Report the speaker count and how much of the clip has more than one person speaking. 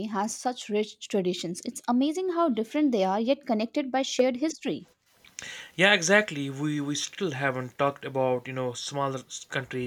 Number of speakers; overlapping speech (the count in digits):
2, no overlap